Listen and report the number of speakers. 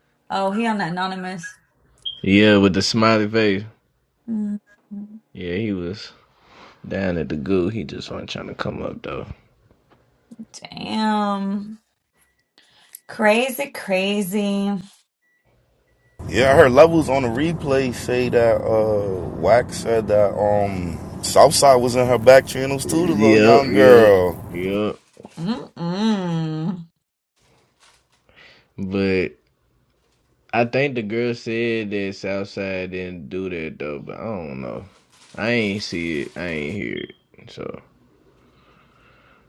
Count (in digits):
3